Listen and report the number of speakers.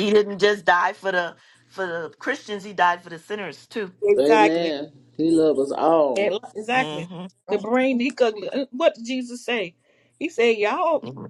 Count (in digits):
3